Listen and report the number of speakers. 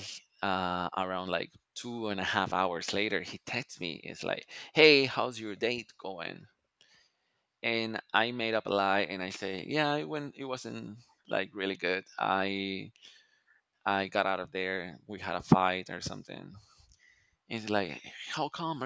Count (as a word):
one